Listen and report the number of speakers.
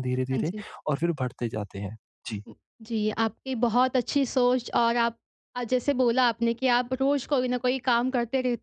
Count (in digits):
2